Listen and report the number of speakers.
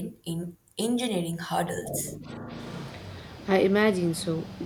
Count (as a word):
two